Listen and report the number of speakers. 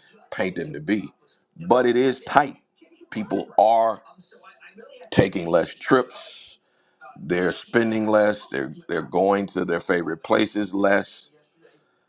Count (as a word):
one